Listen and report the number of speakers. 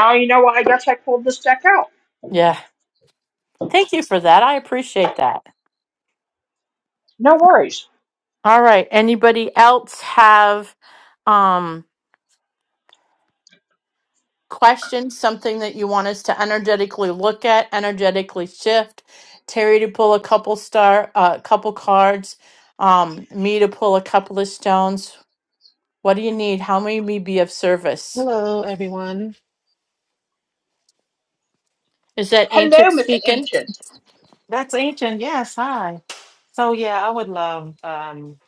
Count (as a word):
three